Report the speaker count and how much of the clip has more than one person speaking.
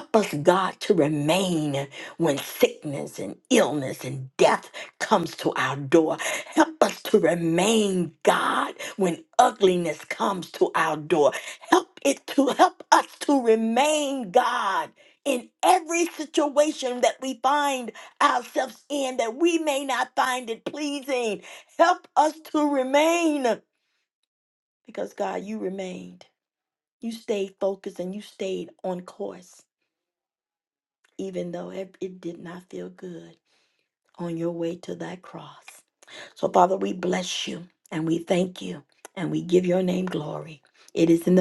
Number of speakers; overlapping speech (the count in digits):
1, no overlap